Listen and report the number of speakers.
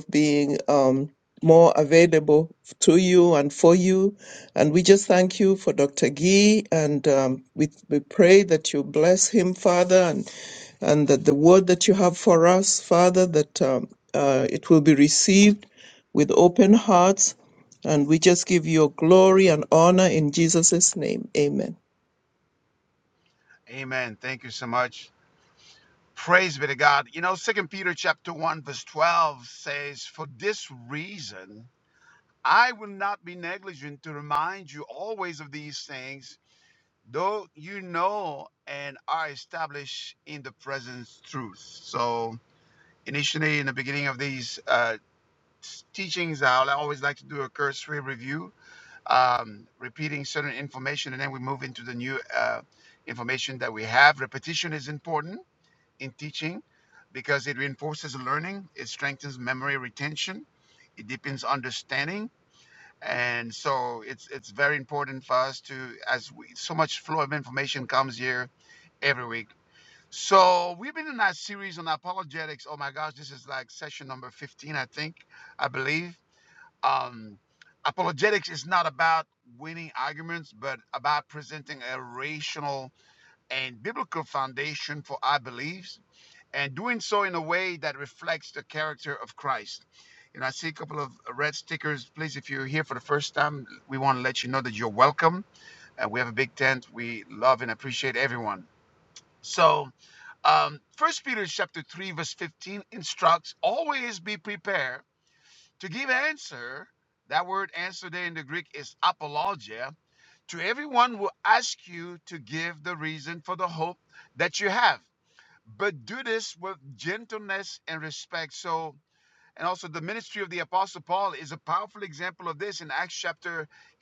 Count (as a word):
two